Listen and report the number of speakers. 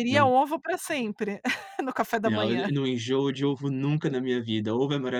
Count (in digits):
2